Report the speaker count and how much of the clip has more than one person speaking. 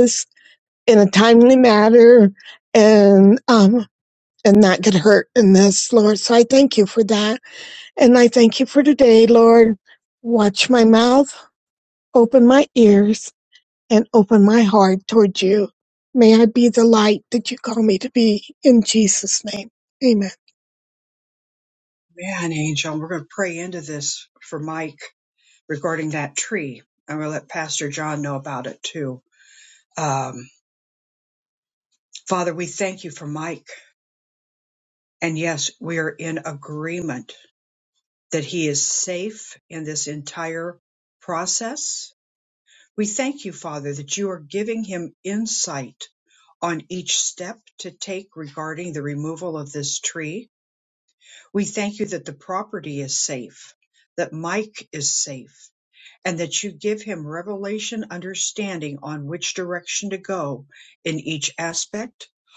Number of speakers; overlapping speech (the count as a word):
two, no overlap